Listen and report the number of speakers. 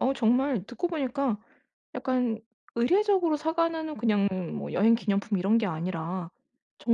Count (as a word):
one